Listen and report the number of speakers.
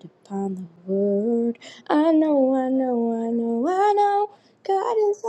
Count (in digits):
1